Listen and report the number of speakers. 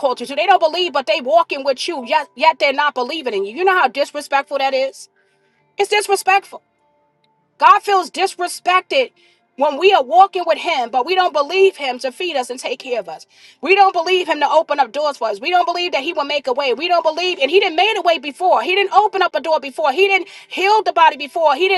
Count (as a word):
one